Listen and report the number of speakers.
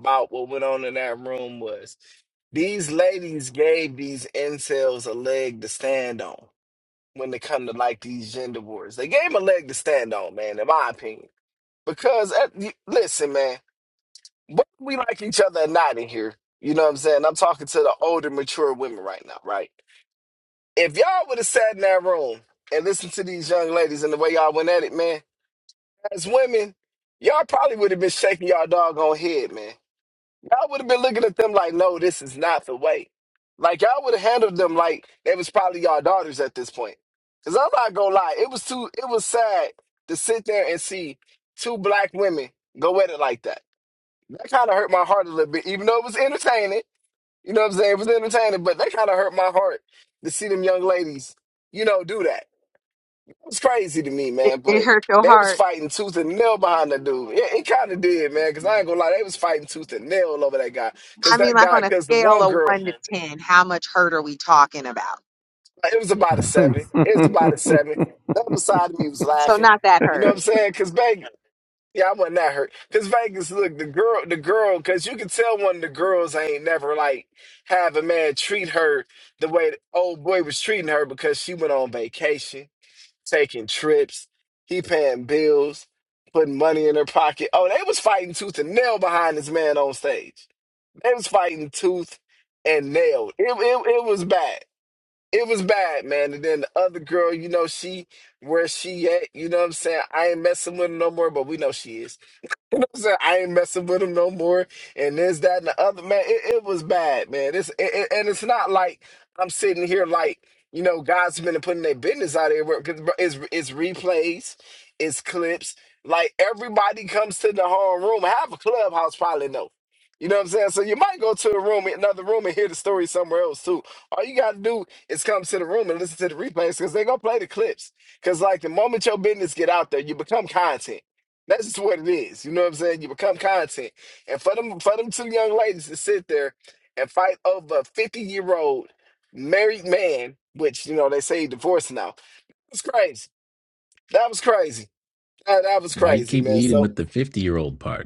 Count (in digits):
3